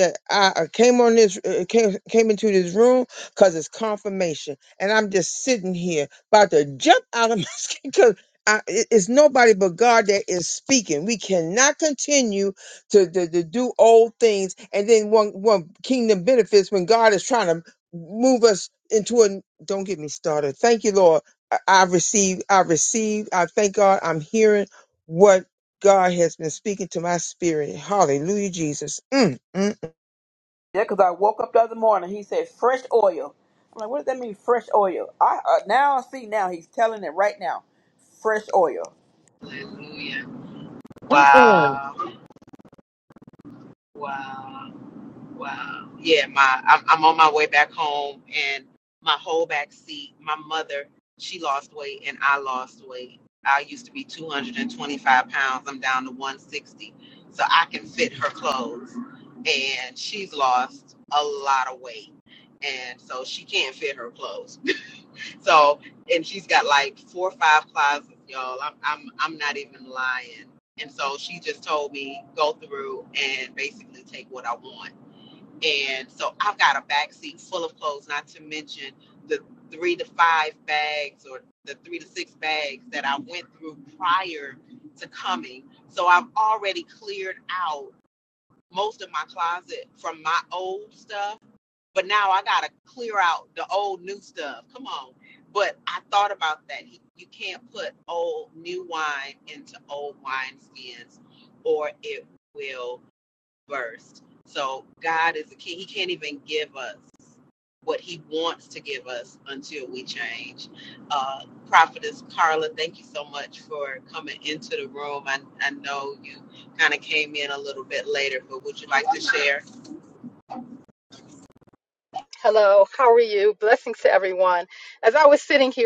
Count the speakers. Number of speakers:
4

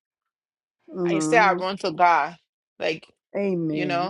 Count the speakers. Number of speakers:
2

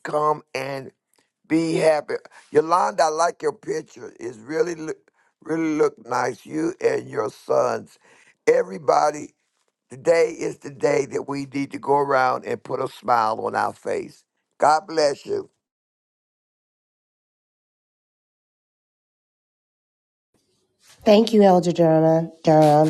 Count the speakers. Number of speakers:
2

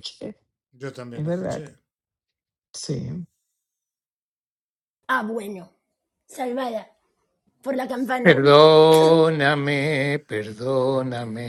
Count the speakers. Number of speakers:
3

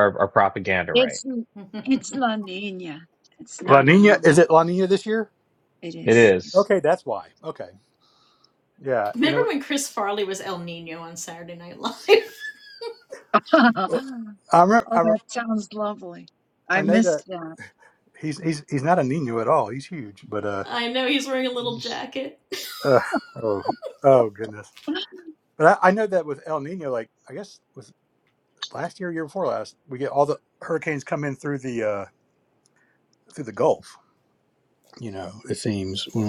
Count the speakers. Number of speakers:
4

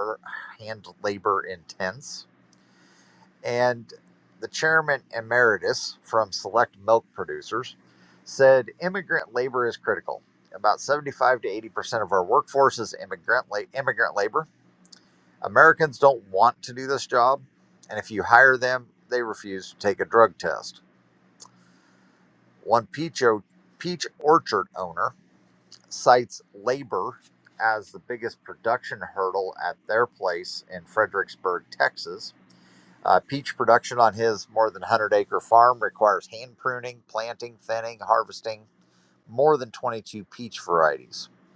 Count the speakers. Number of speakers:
1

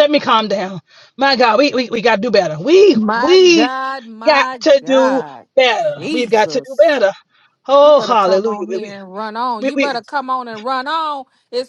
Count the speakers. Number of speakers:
2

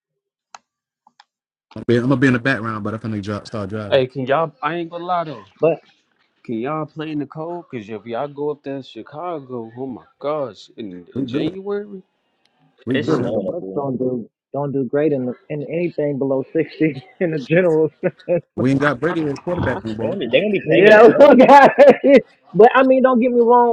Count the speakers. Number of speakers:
4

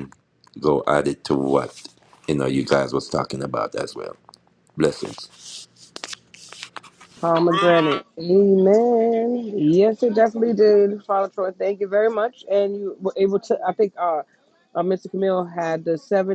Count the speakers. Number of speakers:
2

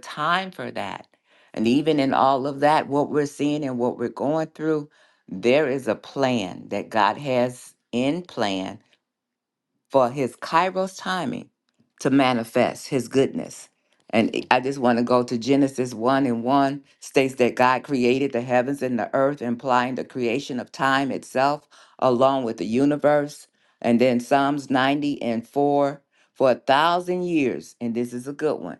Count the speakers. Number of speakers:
1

